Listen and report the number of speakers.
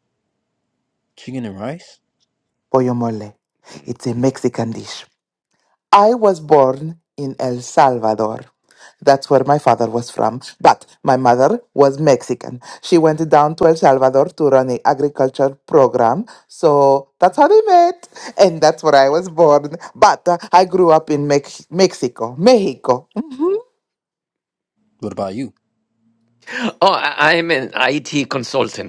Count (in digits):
3